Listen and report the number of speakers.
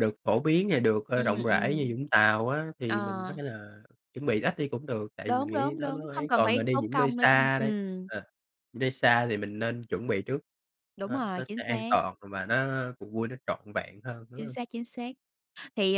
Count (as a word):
two